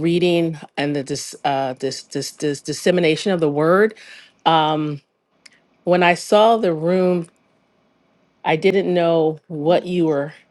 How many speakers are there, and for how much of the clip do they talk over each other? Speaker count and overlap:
1, no overlap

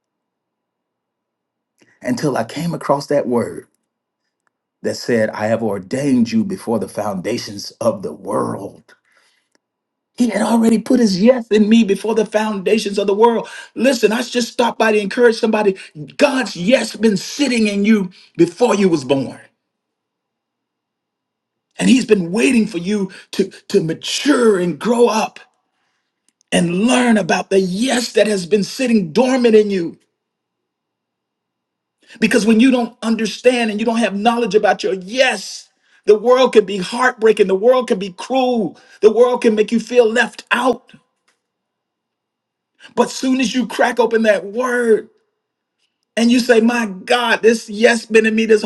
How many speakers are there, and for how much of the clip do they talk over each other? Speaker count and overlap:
1, no overlap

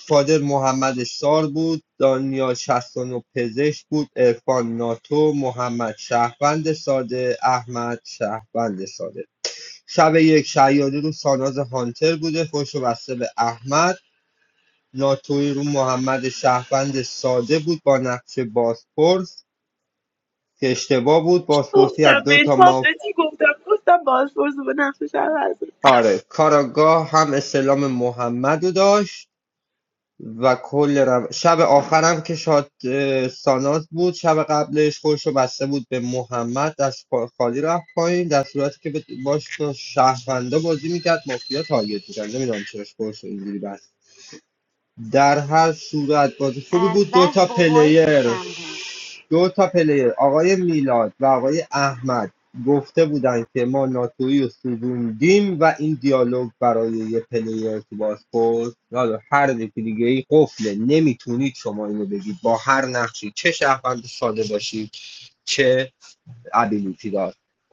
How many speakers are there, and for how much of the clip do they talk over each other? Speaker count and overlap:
3, about 4%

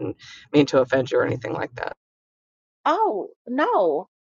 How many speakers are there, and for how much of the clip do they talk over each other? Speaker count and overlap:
2, no overlap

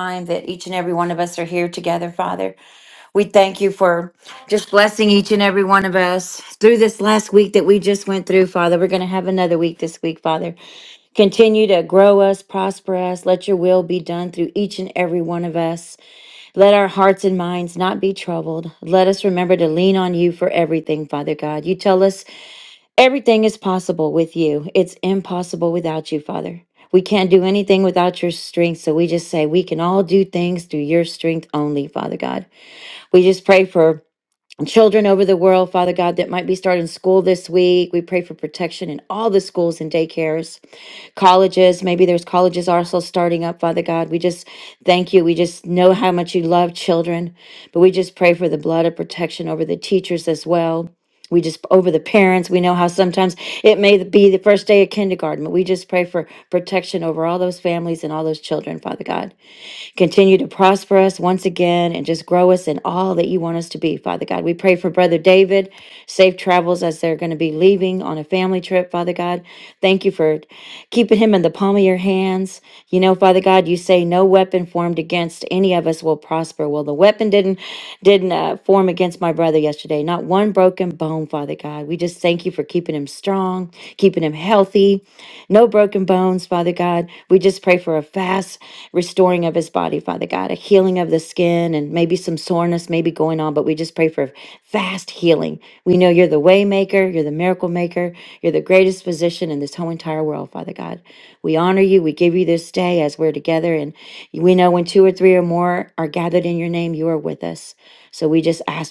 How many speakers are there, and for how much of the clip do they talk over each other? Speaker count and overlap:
1, no overlap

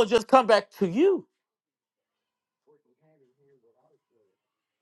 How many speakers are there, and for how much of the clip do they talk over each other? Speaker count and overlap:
1, no overlap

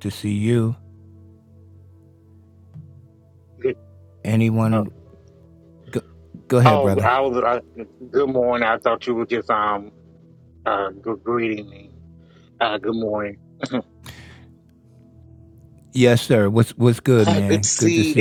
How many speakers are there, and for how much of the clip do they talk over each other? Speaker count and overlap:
2, about 9%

